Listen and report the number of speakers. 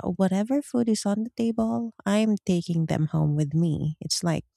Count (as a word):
one